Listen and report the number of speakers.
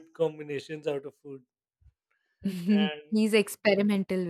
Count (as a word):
two